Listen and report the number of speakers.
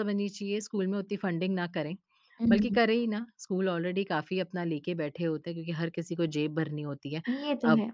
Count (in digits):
2